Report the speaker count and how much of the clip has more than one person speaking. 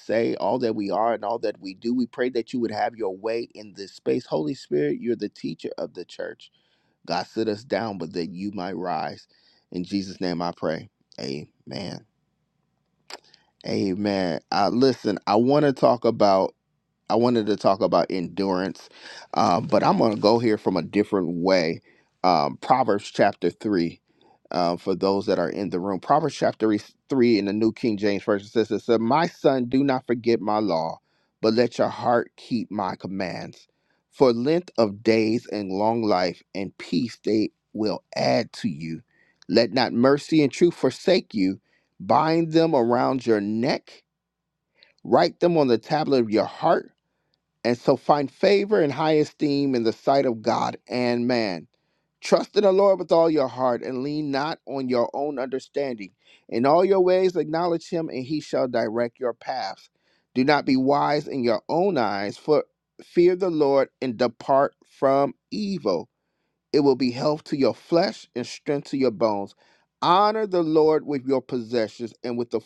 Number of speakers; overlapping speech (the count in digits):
1, no overlap